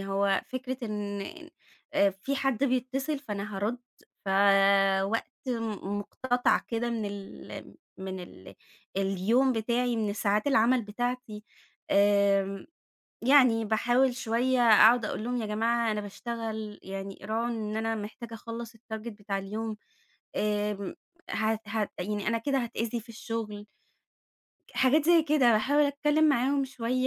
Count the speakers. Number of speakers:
one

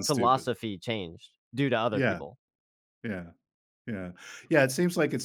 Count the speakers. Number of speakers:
two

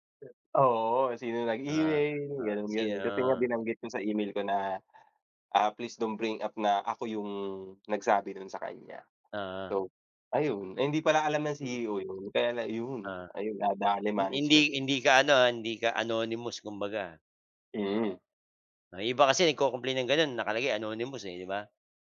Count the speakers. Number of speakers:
two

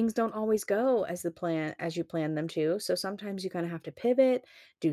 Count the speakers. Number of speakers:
one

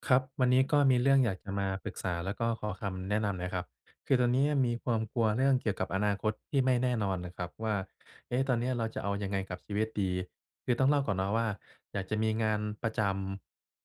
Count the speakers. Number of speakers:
one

